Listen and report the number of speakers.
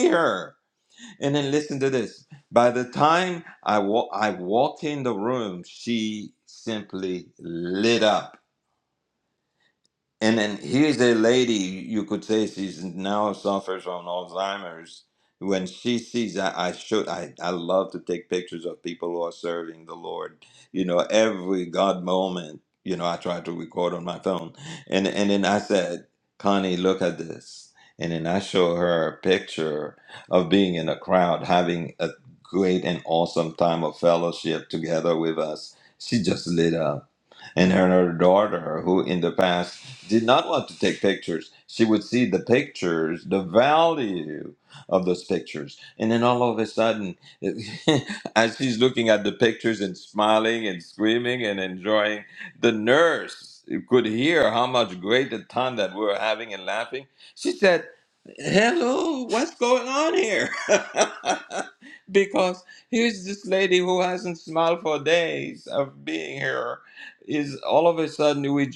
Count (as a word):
one